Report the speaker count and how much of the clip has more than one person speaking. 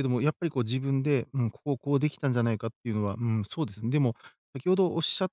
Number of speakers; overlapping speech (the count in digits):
1, no overlap